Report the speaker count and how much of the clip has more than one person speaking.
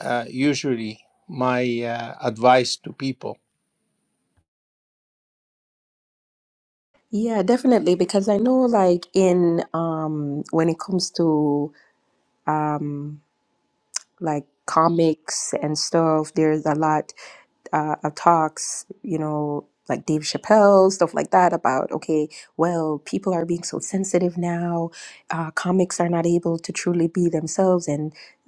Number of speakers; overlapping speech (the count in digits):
2, no overlap